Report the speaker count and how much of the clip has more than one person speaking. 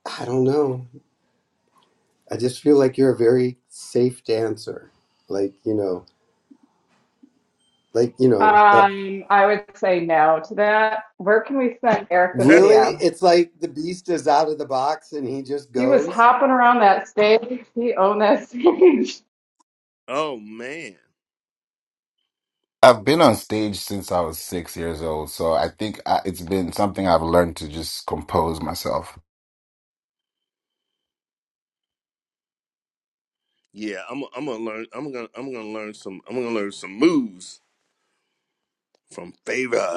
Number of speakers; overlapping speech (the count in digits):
4, about 4%